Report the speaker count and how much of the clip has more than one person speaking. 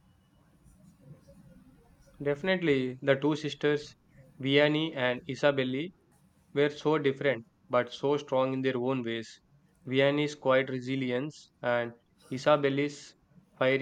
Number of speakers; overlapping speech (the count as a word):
one, no overlap